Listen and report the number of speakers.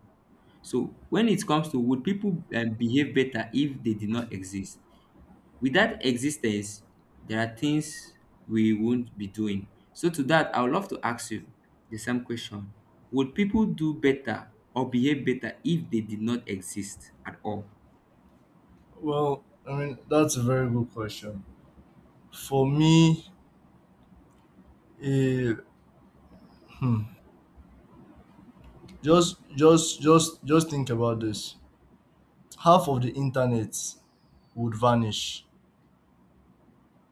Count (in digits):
2